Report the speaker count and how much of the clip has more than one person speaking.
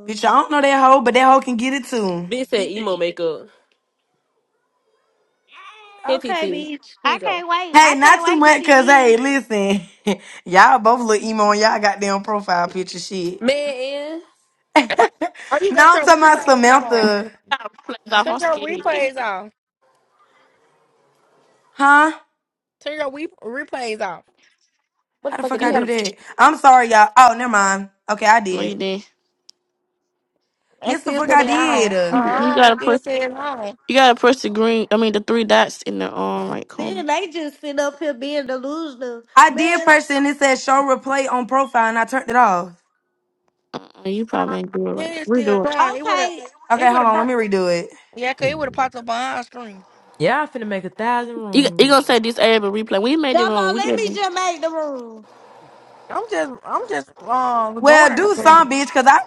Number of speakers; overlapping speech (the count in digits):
6, about 23%